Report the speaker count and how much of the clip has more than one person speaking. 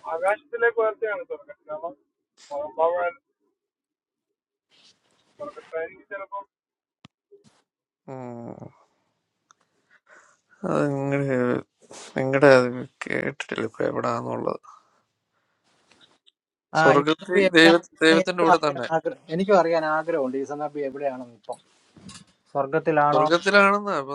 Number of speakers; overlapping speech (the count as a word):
three, about 8%